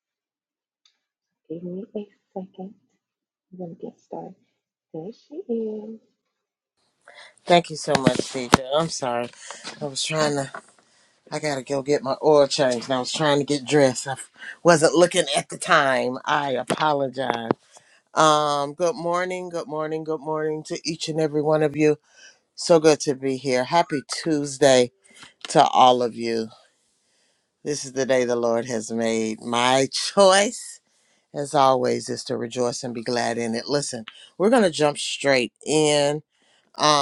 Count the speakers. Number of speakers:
two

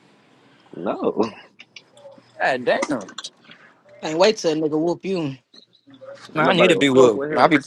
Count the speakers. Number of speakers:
three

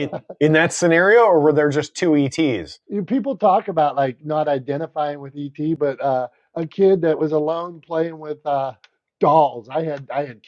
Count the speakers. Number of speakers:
two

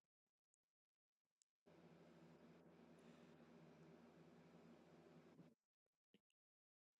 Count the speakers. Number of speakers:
zero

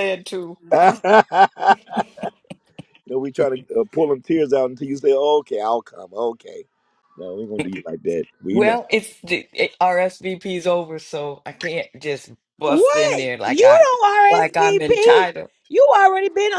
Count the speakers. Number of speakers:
three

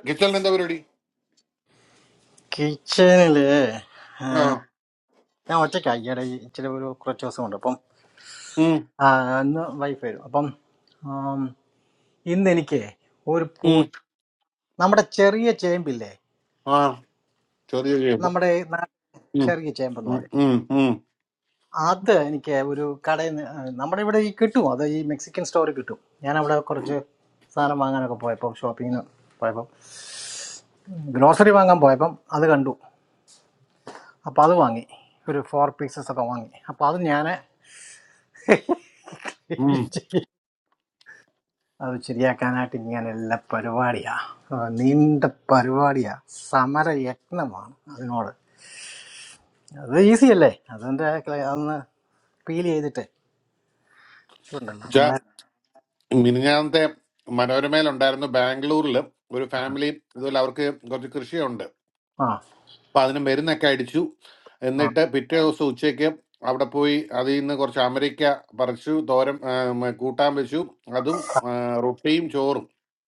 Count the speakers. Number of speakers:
two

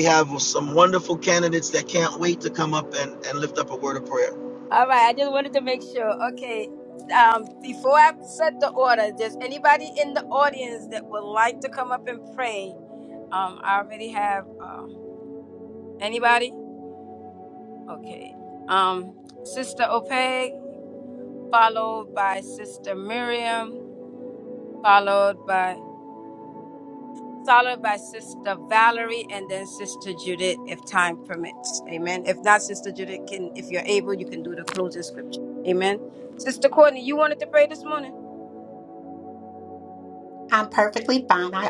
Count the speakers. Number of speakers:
three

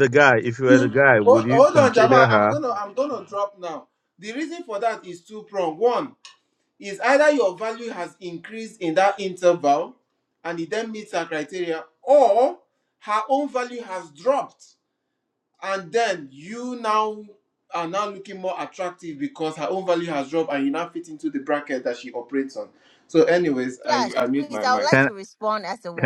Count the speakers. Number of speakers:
three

